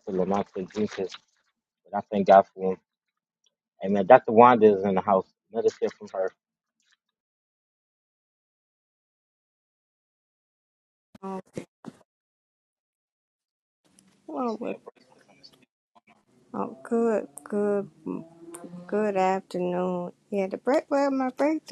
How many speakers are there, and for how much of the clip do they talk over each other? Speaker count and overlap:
2, no overlap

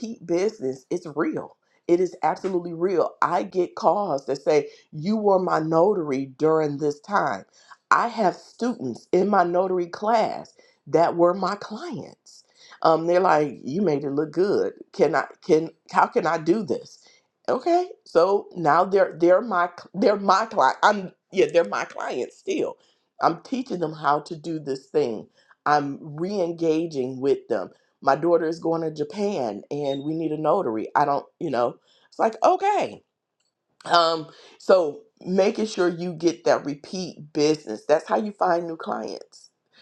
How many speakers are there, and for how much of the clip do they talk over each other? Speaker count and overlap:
1, no overlap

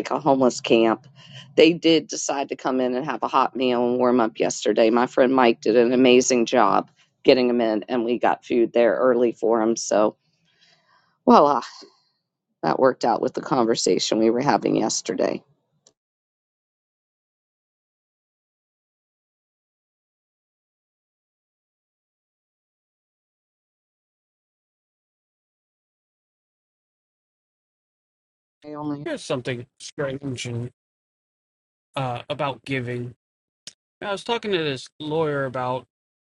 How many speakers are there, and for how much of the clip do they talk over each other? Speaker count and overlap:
2, no overlap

